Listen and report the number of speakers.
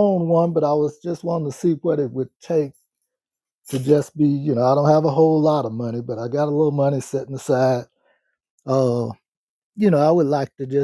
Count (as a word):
one